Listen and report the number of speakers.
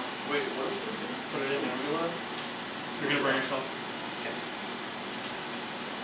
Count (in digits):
2